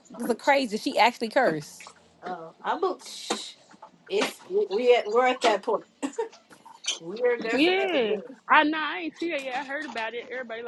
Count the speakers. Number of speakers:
three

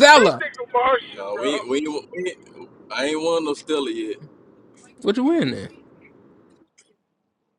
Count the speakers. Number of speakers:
three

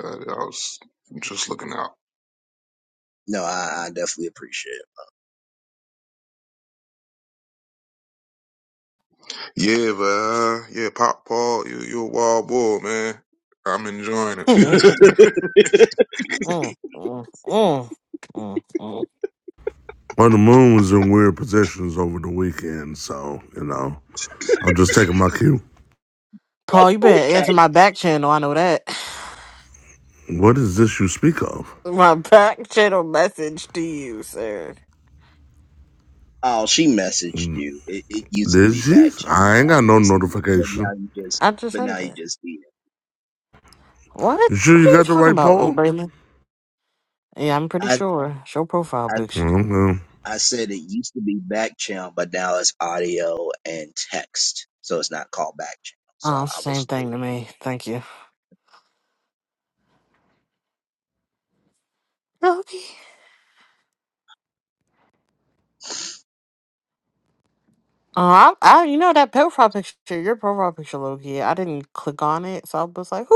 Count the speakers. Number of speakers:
four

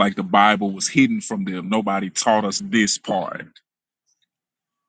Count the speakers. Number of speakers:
one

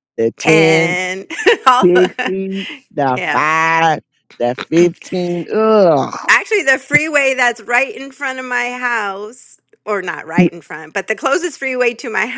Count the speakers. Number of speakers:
two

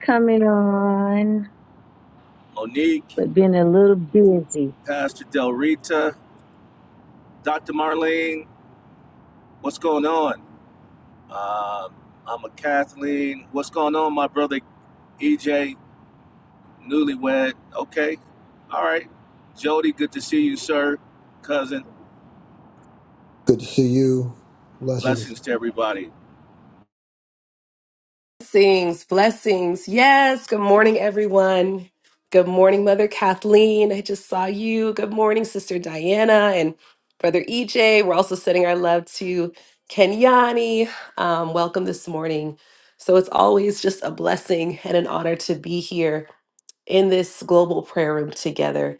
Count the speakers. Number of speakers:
four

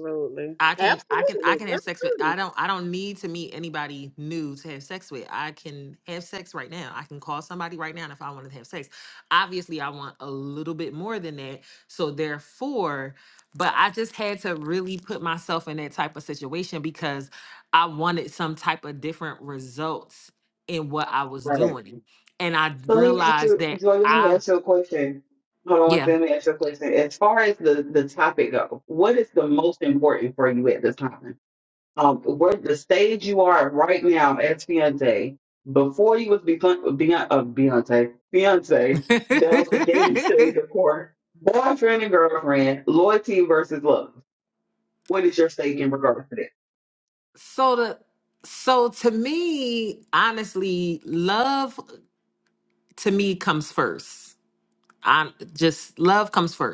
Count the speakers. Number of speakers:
three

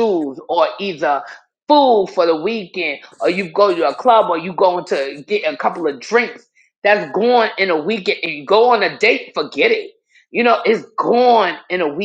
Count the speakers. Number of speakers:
one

